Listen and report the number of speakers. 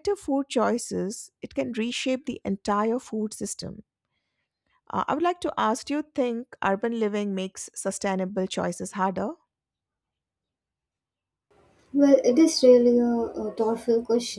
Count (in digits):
2